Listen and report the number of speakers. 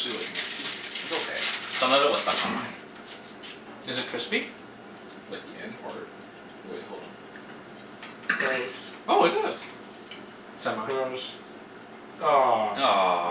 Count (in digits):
4